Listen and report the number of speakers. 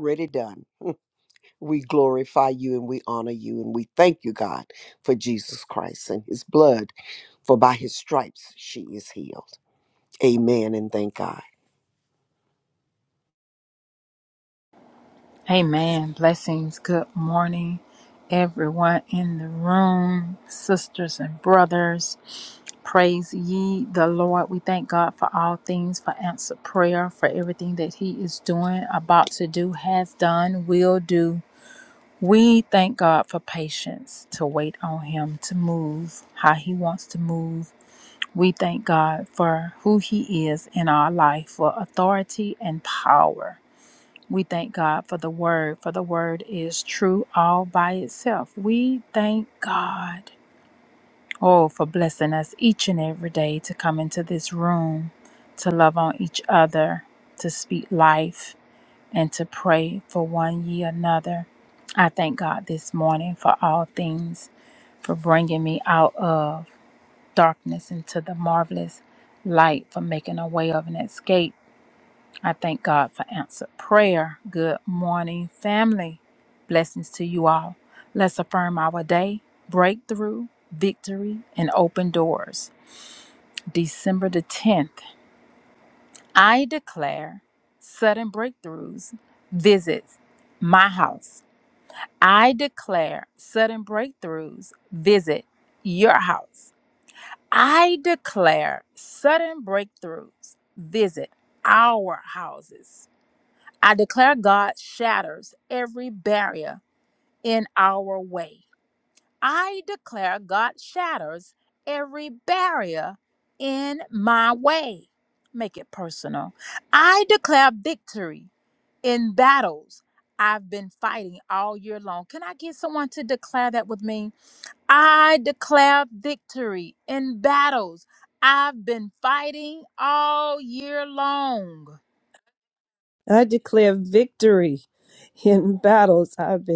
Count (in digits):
3